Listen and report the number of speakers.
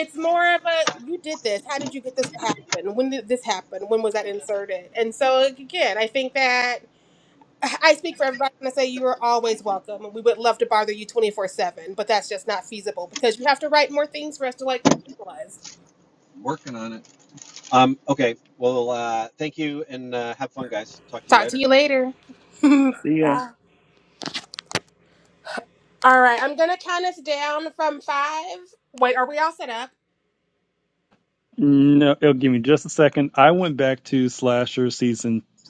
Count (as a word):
three